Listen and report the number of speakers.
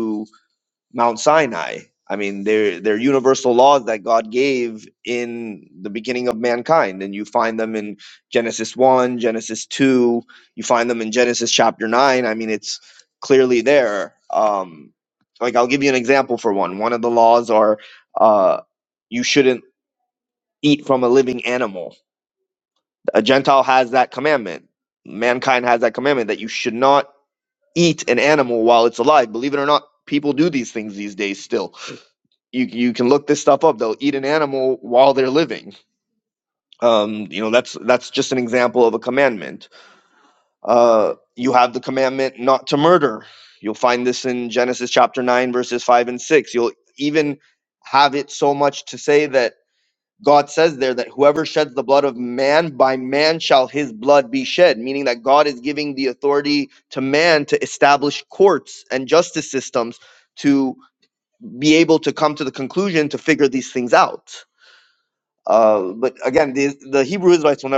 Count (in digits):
1